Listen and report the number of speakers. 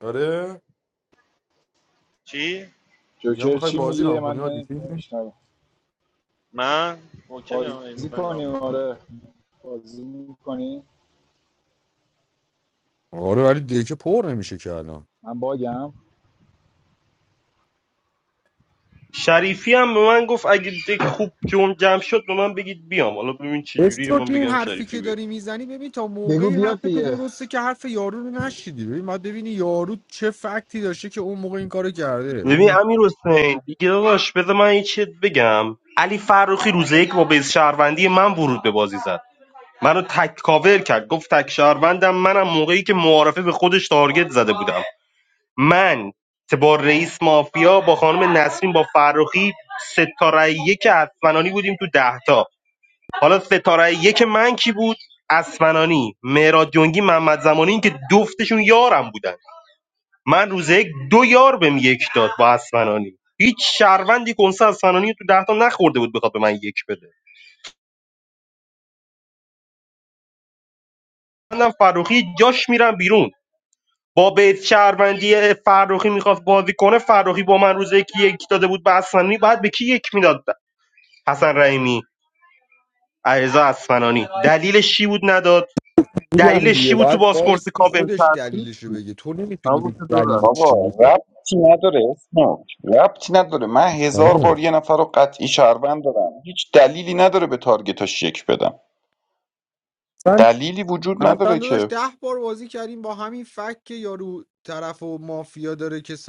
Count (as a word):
five